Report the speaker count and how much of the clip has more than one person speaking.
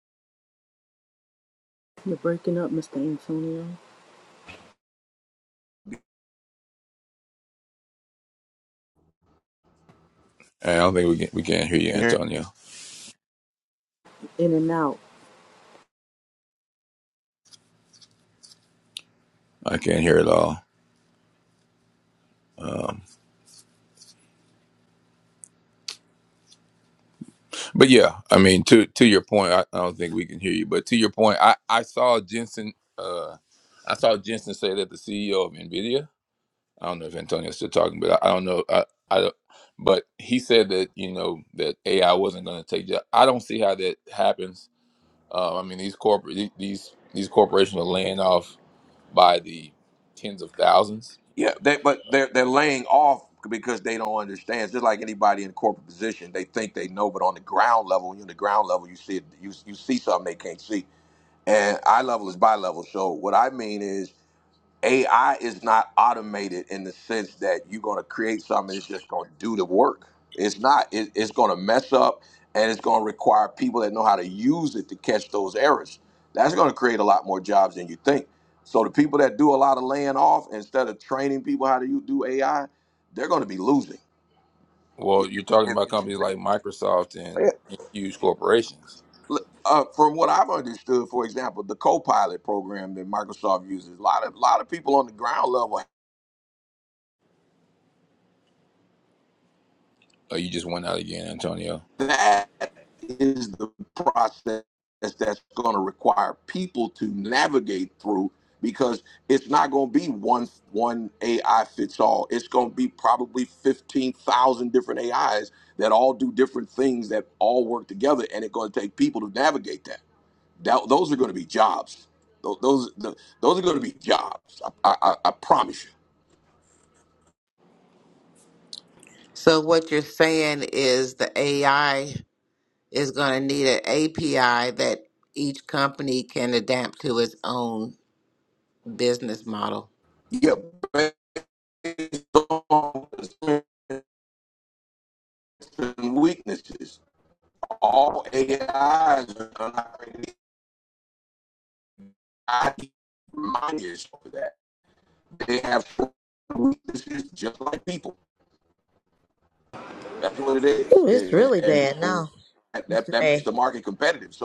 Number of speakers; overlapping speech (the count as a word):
five, about 1%